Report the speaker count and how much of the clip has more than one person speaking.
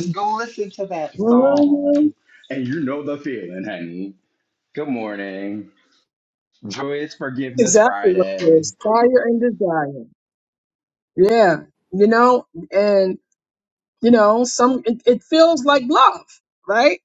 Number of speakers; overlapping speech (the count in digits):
2, about 10%